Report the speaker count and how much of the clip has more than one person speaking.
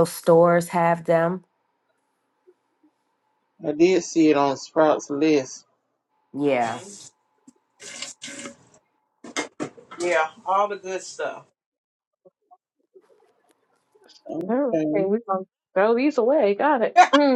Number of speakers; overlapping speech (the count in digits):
4, about 2%